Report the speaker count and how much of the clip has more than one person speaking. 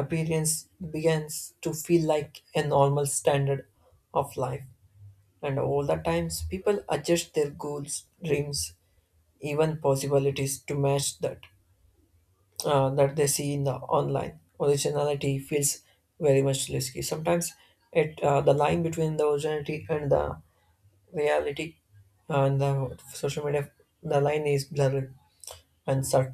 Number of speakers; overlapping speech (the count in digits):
1, no overlap